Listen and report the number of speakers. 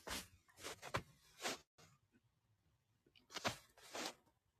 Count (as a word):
zero